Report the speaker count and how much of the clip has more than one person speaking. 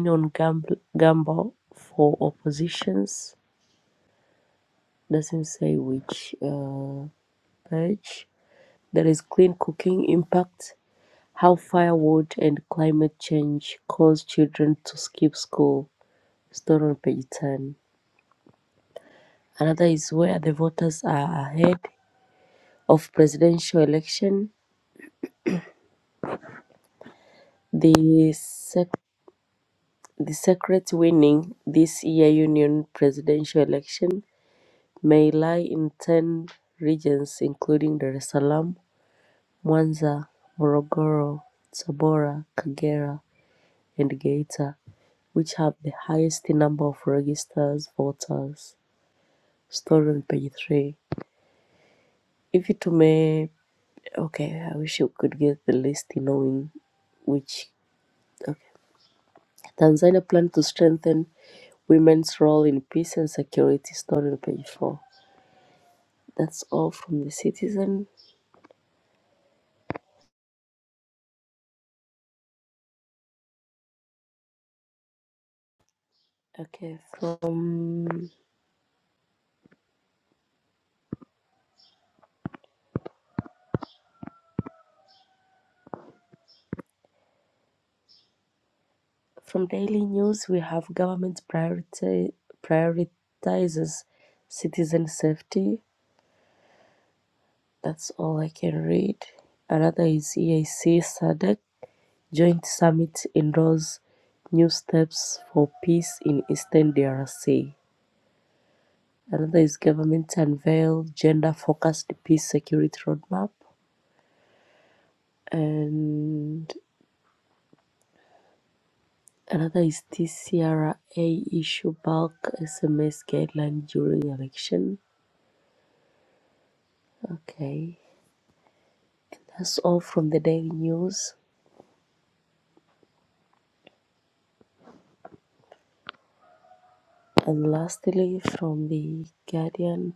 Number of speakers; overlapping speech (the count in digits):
1, no overlap